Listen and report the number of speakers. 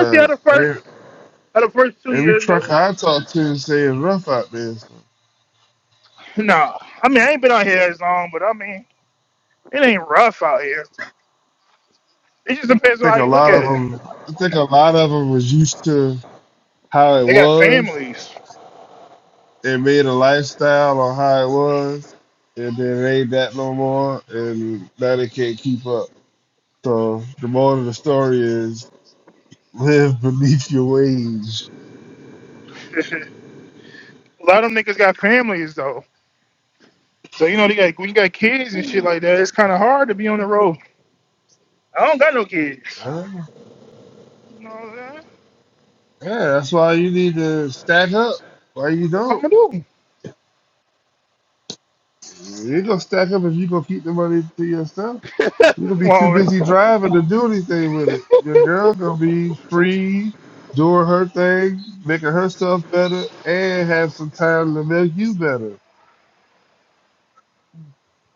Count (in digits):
2